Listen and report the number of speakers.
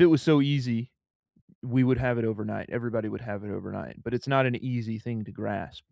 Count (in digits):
1